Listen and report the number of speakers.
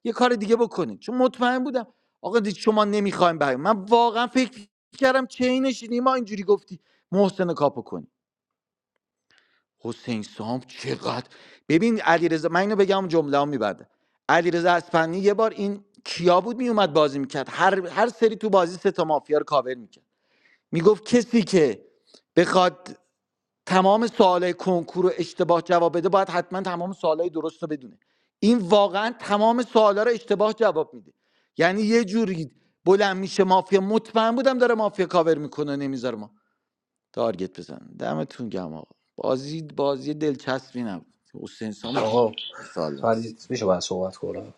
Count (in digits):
2